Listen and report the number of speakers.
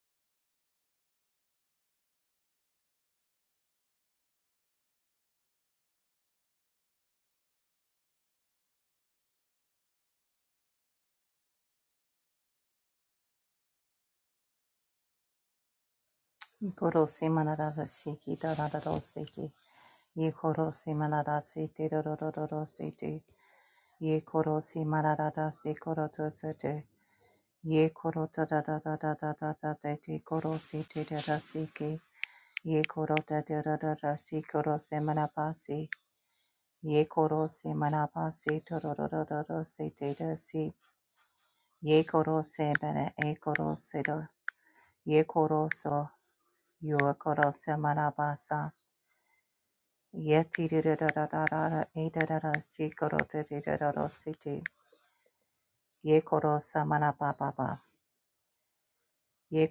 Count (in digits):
1